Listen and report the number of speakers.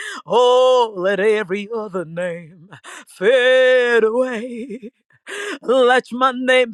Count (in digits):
1